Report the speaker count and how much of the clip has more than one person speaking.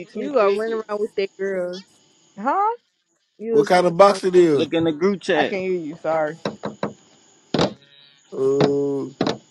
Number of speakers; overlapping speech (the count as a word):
four, about 21%